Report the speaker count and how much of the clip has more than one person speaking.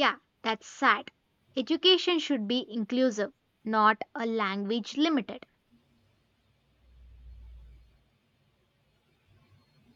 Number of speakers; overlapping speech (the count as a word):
one, no overlap